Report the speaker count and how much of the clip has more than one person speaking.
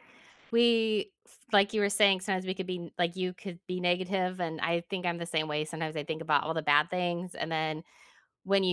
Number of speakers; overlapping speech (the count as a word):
one, no overlap